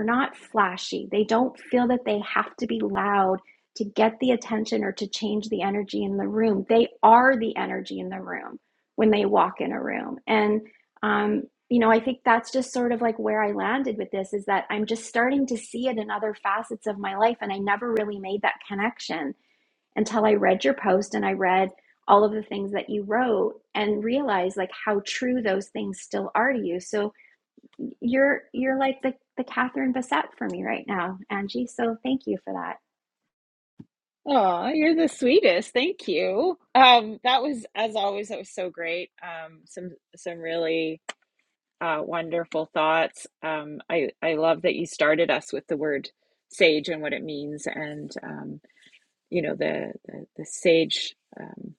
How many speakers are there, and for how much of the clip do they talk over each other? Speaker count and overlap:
2, no overlap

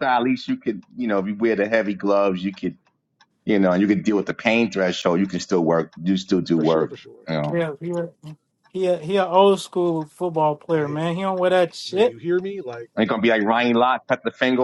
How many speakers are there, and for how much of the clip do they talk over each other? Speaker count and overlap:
3, about 7%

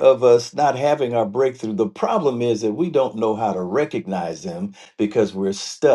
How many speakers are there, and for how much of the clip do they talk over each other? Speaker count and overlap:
1, no overlap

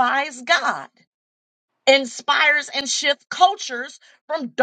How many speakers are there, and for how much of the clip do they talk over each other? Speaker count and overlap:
1, no overlap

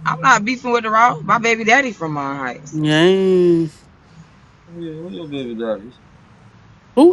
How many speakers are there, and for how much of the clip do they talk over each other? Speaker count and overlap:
3, no overlap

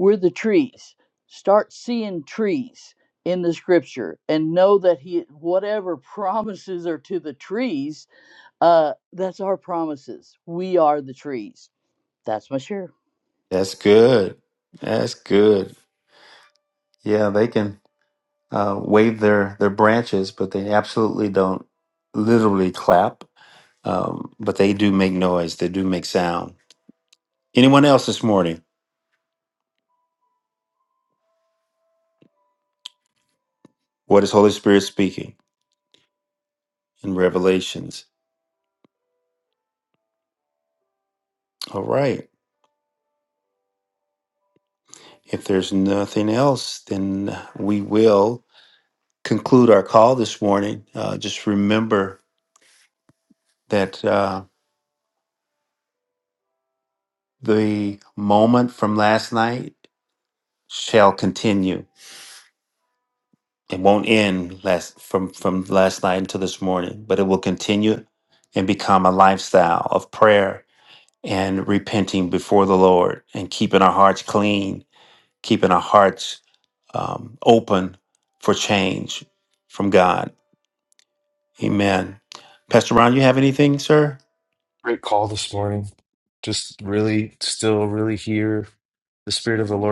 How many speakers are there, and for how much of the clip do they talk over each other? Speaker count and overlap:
3, no overlap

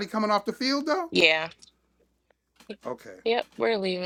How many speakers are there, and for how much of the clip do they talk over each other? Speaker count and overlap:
2, no overlap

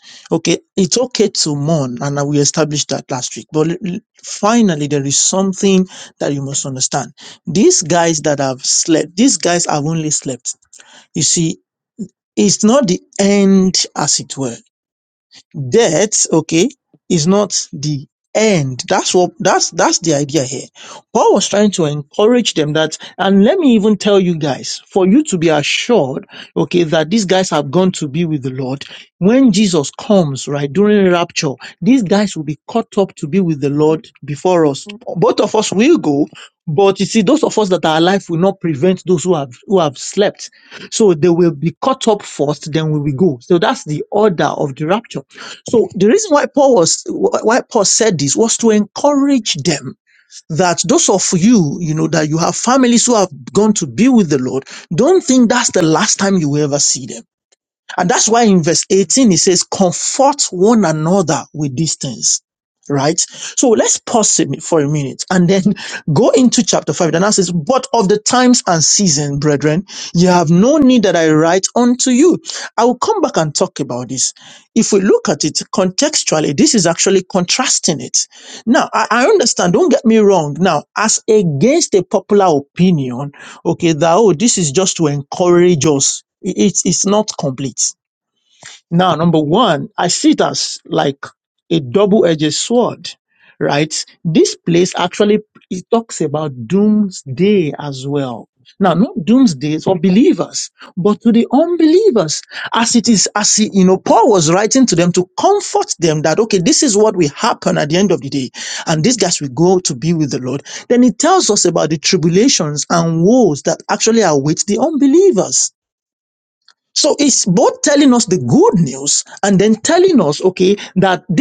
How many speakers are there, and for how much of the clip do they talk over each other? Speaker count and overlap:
1, no overlap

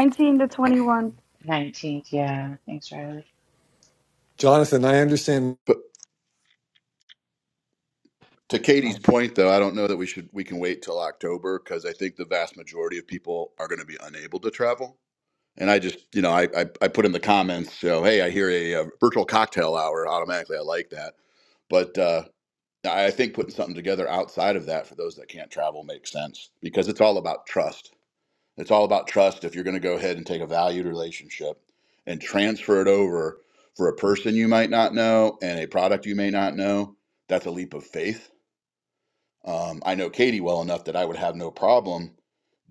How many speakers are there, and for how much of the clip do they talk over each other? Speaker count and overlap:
4, no overlap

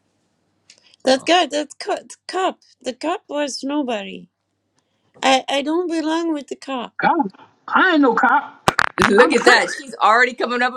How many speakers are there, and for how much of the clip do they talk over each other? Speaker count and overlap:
3, about 3%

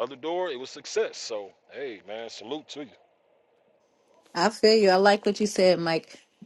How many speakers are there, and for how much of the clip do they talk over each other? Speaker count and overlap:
2, no overlap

